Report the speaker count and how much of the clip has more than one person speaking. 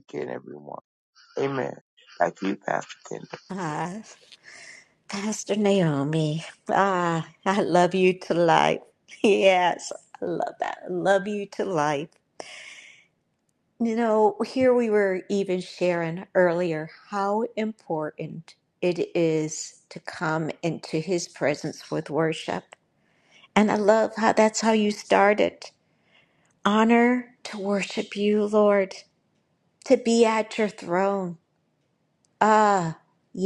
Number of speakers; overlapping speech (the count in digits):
2, no overlap